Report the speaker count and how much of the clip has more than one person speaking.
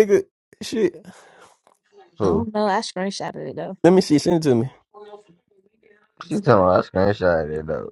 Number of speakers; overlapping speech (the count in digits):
3, about 3%